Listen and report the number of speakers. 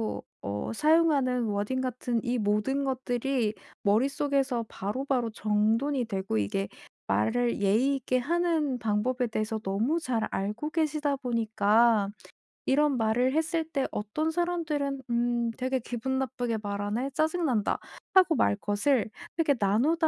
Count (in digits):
1